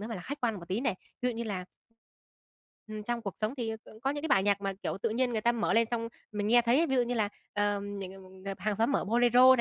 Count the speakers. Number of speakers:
one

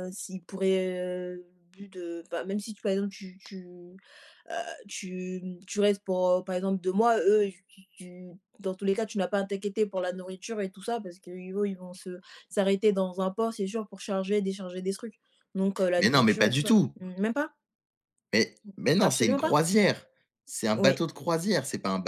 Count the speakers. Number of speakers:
two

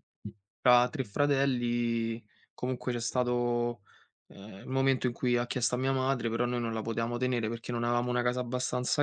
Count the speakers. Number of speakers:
one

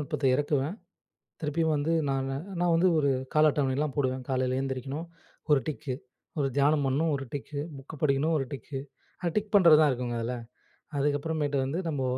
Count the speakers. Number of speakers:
one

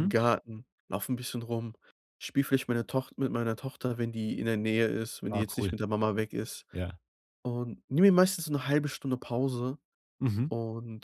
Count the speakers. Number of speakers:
two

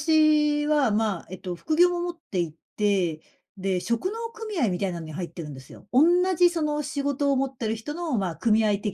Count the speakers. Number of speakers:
one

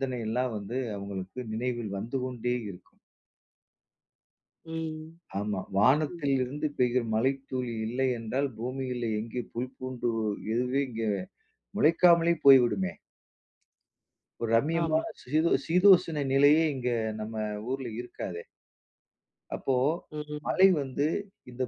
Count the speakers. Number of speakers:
two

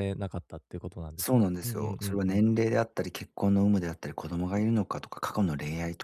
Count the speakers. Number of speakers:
two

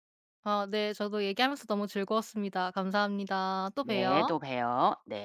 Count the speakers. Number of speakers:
two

